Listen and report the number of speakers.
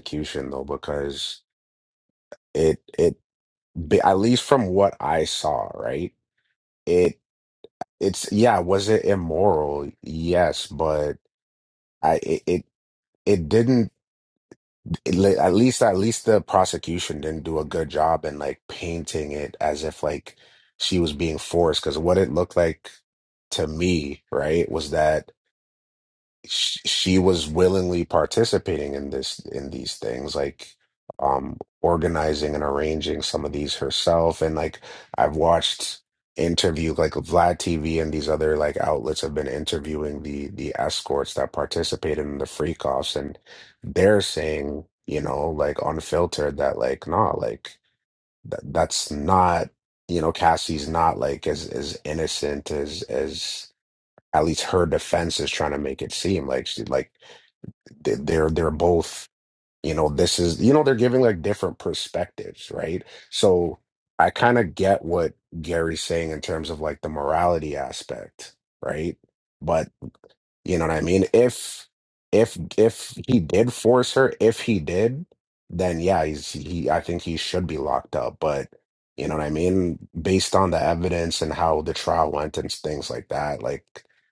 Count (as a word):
one